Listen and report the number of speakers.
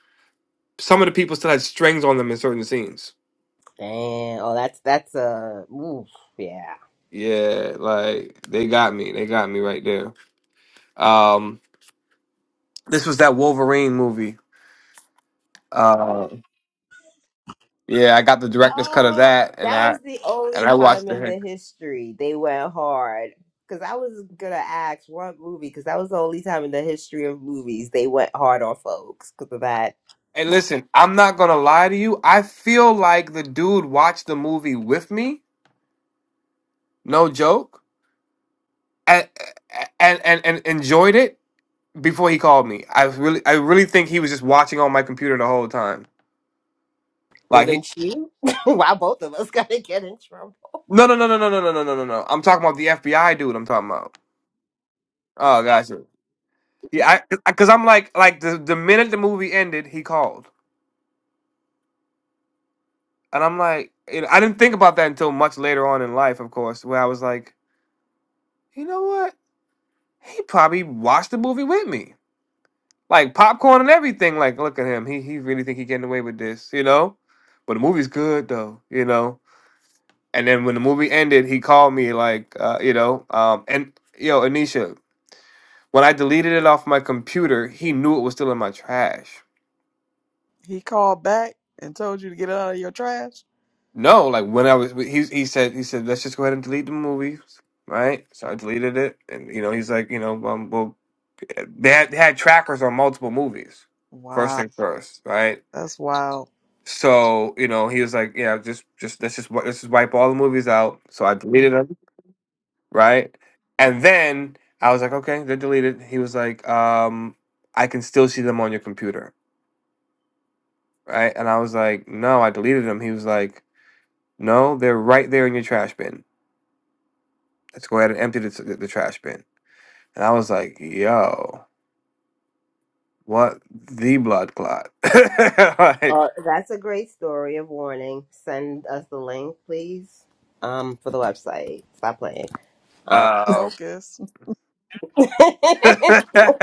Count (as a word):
three